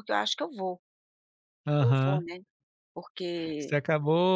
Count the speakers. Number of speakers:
2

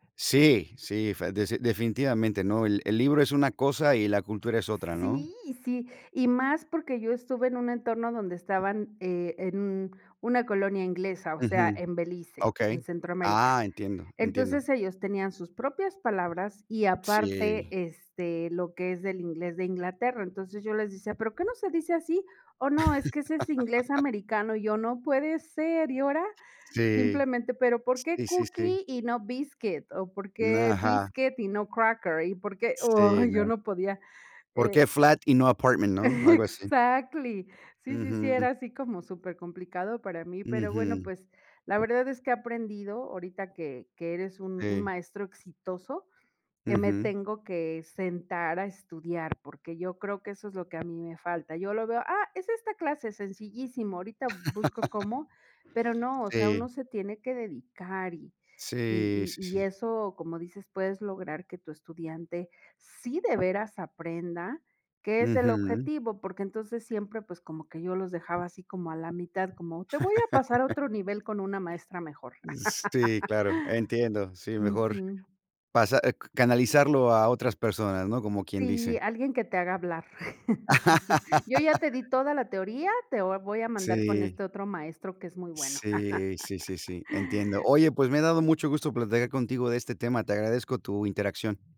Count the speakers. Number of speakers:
2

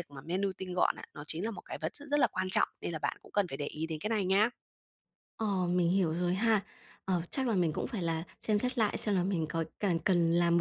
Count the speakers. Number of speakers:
2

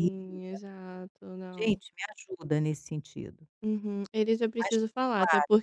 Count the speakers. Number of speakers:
2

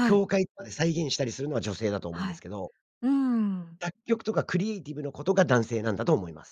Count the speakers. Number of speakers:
2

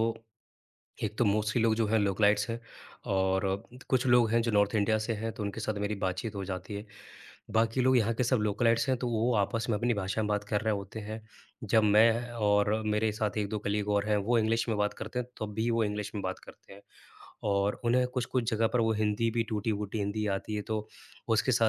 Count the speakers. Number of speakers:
1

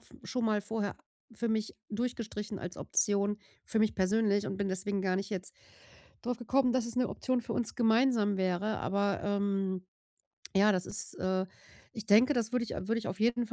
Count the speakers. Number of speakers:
1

